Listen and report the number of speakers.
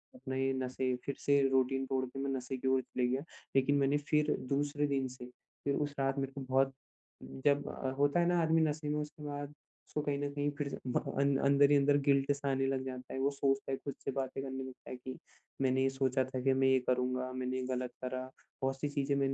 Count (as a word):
one